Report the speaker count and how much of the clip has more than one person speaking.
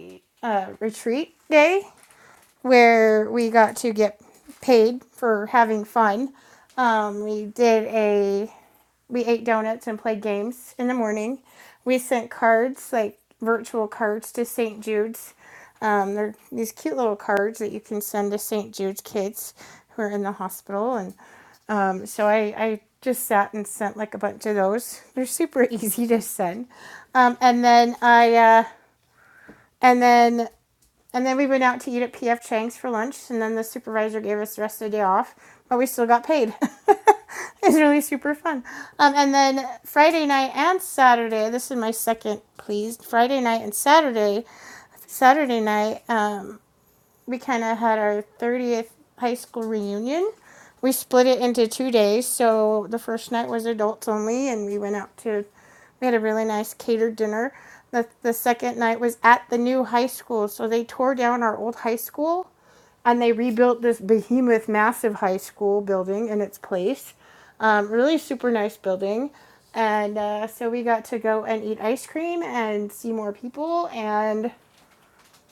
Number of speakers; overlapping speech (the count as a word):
one, no overlap